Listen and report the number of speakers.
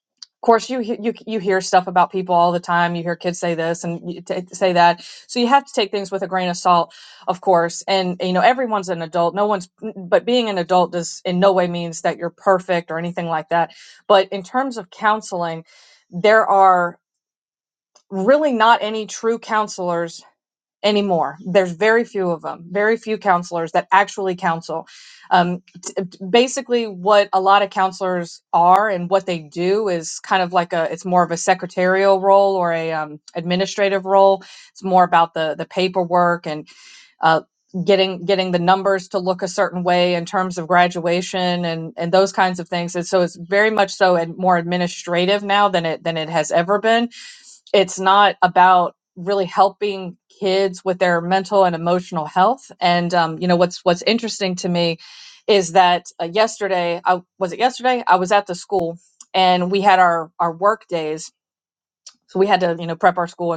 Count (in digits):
1